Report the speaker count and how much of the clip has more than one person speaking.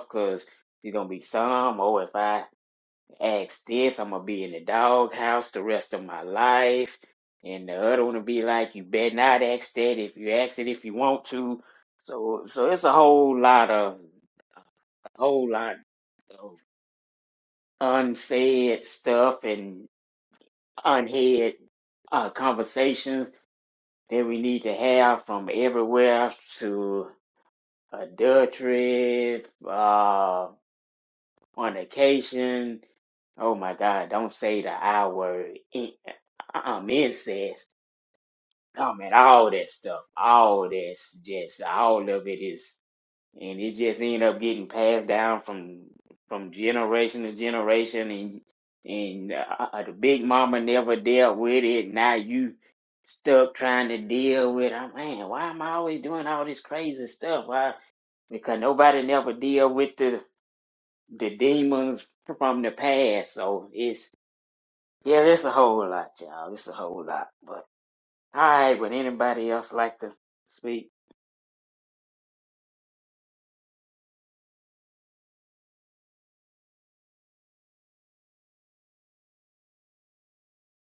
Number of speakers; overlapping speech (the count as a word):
one, no overlap